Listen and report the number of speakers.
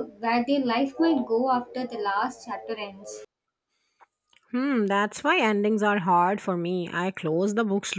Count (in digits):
2